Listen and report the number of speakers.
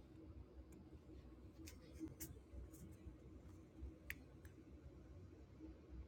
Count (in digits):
0